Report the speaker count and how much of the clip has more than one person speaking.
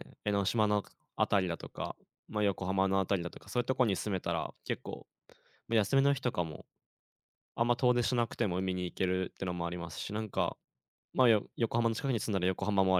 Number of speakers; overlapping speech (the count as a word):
one, no overlap